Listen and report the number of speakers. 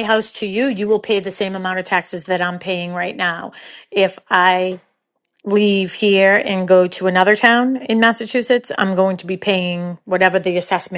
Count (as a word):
one